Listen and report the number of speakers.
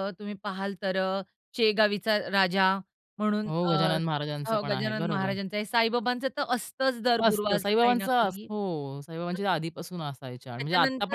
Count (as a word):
two